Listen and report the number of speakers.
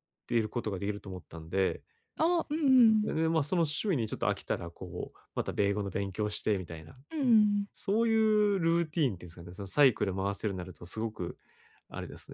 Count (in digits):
2